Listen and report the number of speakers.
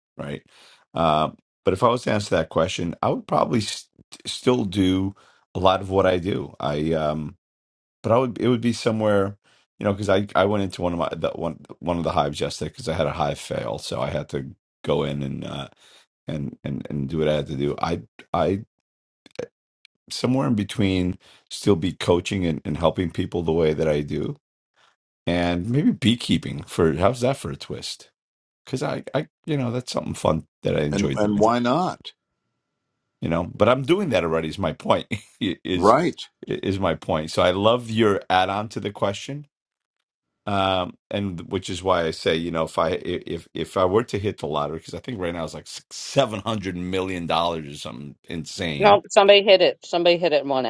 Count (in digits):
3